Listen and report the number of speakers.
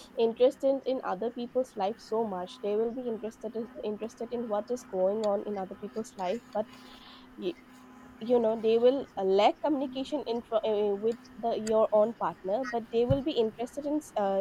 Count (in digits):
1